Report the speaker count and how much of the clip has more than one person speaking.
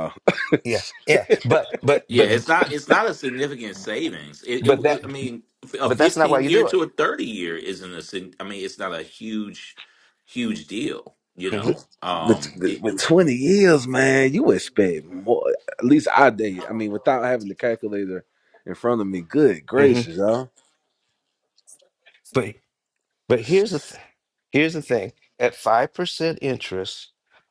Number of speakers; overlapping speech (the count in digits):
3, about 10%